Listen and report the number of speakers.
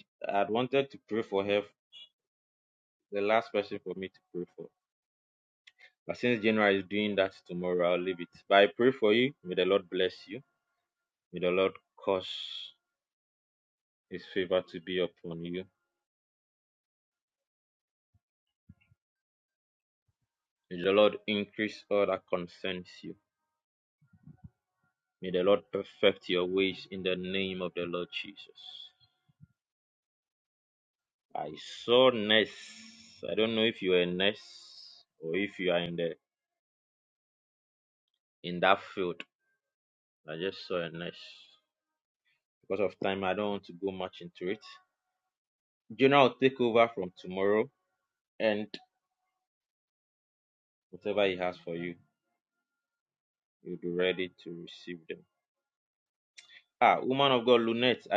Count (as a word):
one